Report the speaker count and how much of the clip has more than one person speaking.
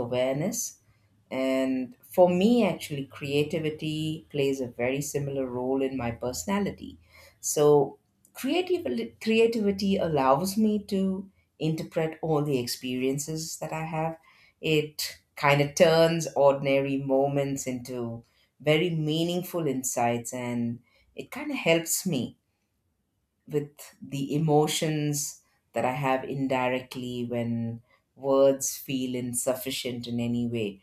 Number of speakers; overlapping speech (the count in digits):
1, no overlap